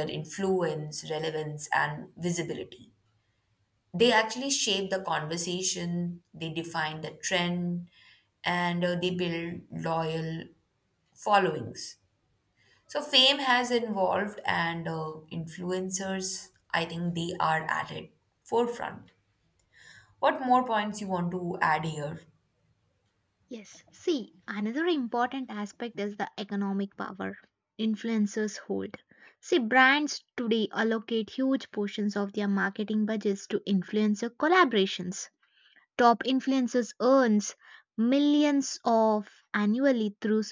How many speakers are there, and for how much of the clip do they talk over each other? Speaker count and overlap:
two, no overlap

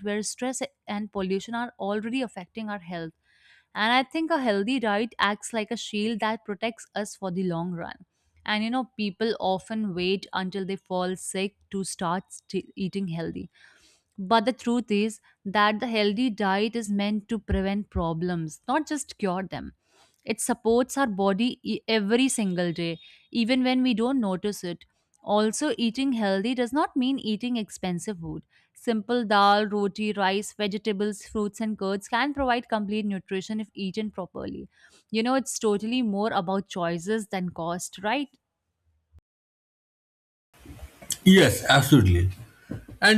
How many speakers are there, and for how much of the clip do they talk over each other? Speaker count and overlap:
two, no overlap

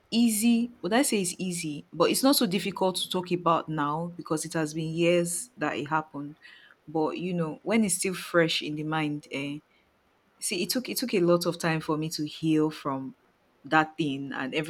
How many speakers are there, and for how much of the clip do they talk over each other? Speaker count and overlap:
one, no overlap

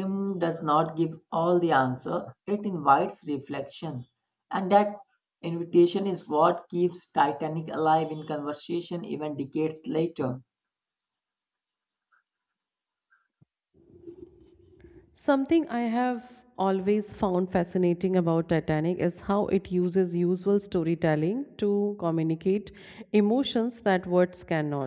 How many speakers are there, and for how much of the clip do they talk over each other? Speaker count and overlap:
two, no overlap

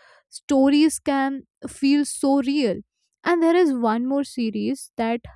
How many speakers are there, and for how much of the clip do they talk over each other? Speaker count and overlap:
one, no overlap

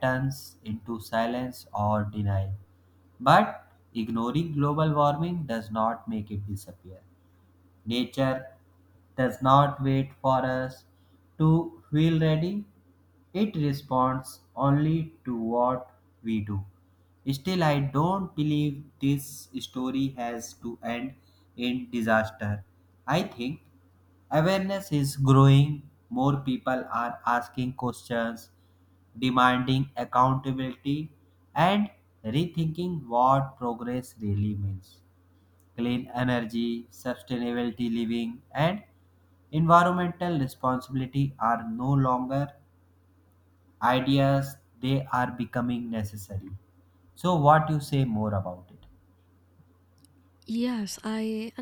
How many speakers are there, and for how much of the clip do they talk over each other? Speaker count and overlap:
two, no overlap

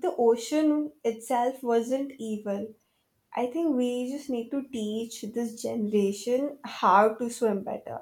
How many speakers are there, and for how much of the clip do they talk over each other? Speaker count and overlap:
one, no overlap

